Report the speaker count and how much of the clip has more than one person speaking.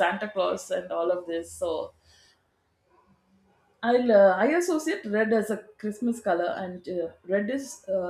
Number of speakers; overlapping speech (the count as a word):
one, no overlap